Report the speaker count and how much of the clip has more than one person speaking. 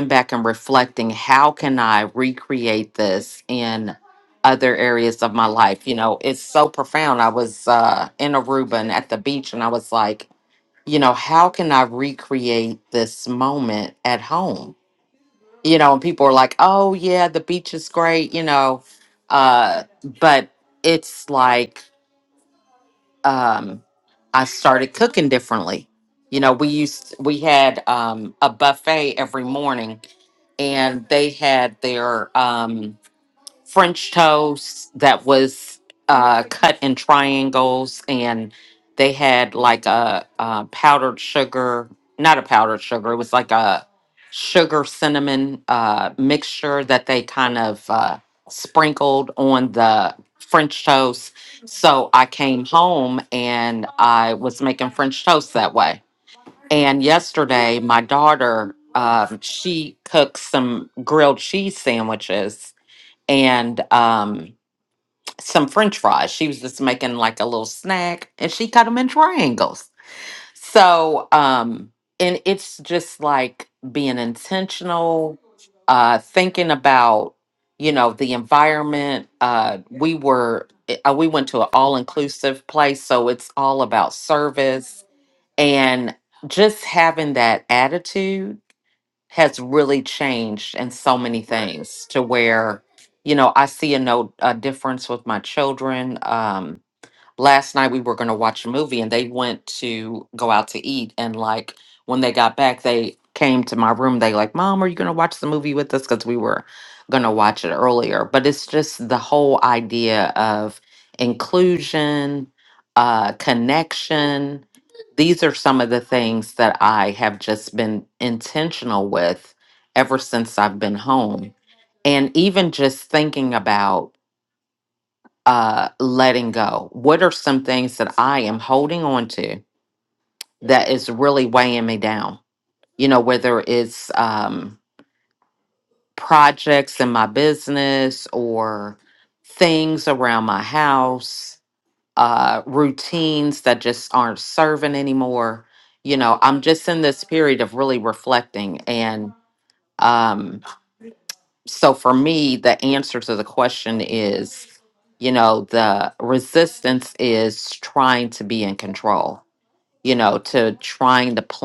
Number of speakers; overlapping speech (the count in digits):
1, no overlap